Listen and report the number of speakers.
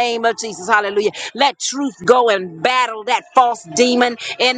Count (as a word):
one